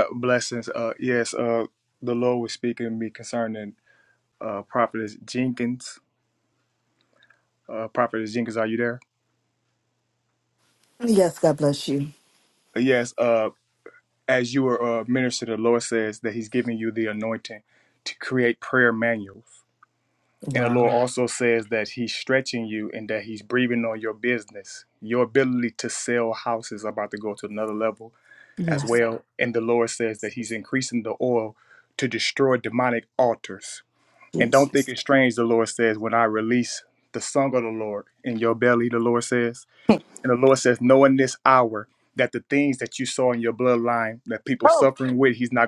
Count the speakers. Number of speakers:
two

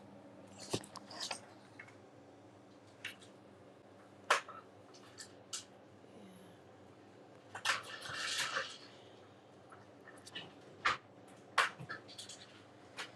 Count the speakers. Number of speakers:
zero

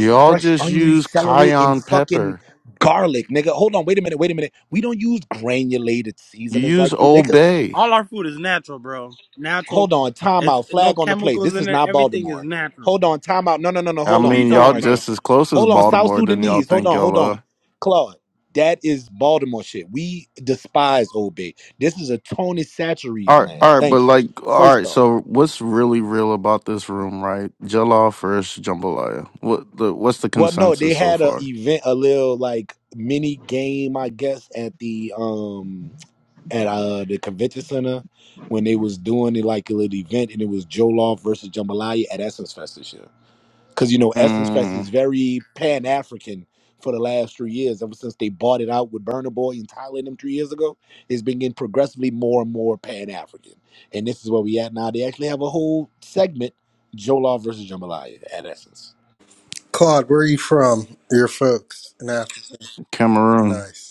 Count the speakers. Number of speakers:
four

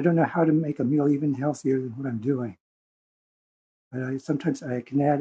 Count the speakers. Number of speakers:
one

